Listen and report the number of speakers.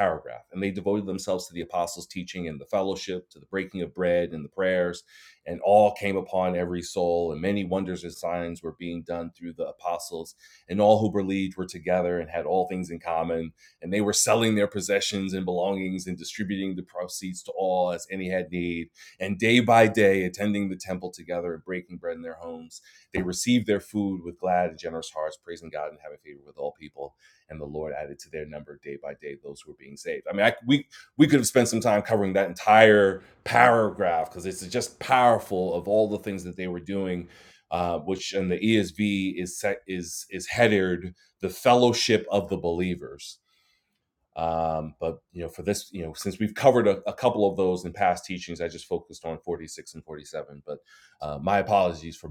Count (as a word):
one